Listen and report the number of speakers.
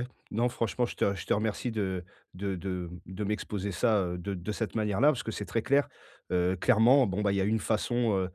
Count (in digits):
1